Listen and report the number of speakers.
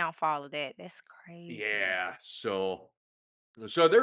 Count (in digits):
2